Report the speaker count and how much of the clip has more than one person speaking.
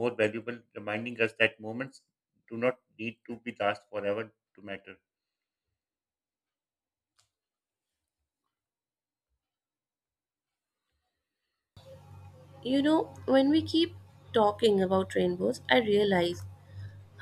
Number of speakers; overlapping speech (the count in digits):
2, no overlap